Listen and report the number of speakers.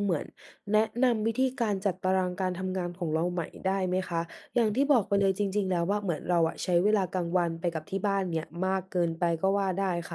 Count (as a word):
one